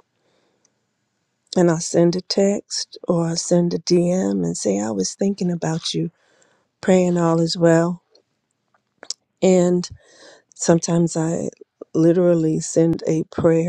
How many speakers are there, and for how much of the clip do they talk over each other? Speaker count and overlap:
1, no overlap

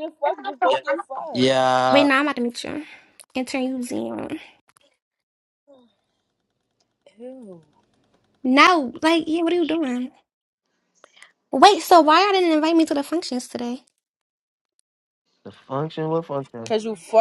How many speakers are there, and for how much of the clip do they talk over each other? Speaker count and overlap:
3, about 2%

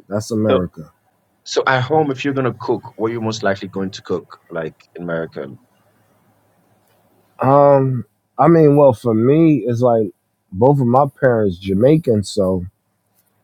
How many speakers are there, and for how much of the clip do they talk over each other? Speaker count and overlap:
2, about 1%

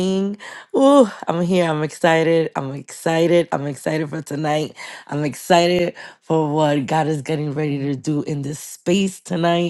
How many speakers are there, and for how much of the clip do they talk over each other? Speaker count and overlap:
1, no overlap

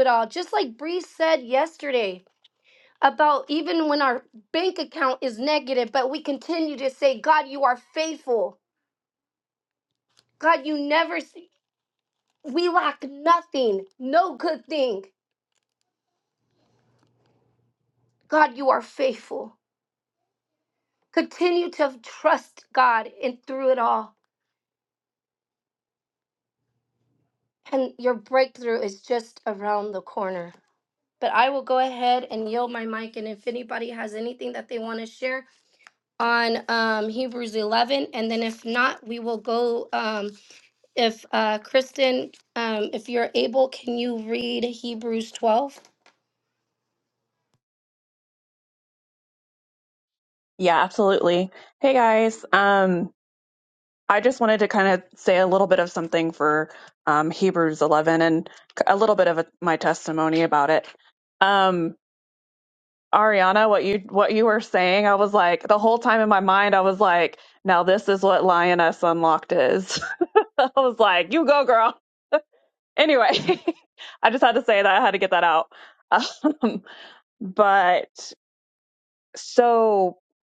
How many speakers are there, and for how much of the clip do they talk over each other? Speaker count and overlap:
2, no overlap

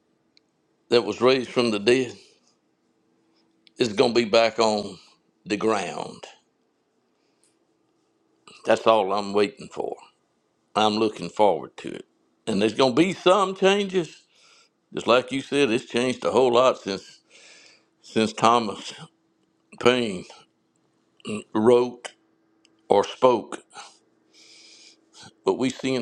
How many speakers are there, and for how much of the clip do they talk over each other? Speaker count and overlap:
1, no overlap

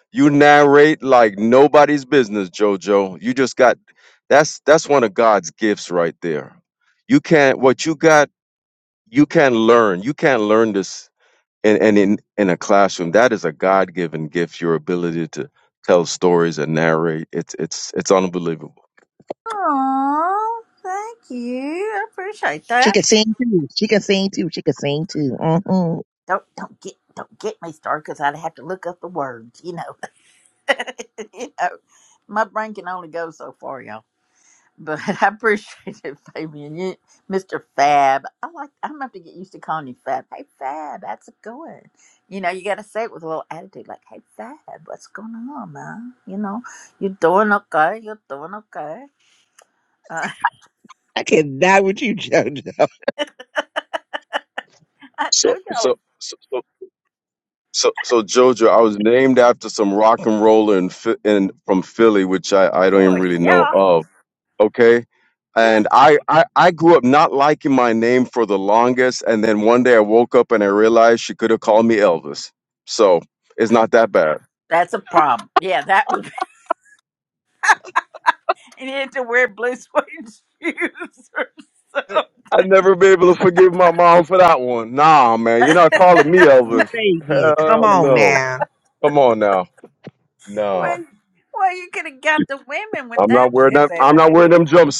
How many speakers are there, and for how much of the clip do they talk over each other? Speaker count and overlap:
3, about 5%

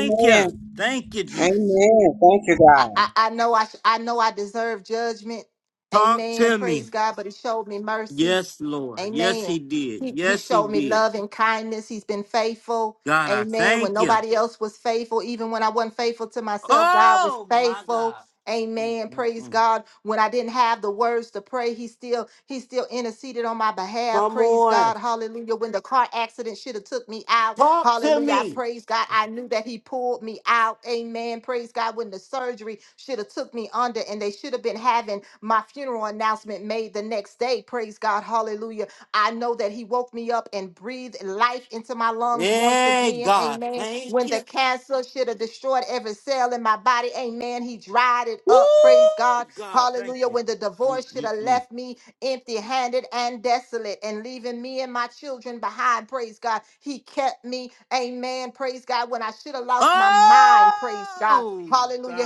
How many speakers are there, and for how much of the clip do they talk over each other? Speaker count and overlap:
3, about 22%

